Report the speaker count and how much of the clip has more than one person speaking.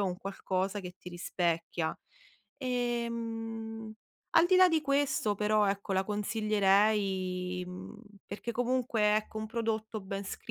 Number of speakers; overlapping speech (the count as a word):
one, no overlap